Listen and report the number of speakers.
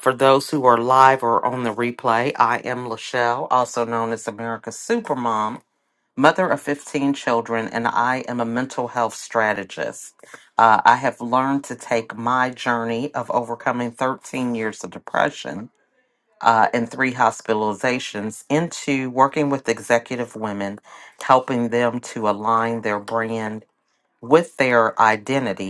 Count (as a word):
one